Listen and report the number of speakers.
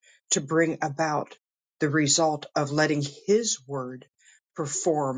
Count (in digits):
1